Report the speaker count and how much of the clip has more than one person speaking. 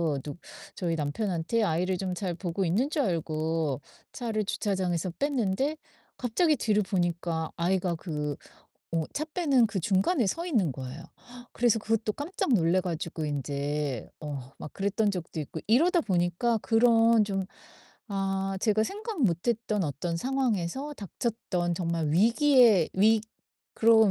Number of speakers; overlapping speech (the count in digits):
1, no overlap